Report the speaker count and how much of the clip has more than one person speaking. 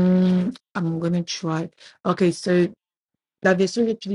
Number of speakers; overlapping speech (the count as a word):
one, no overlap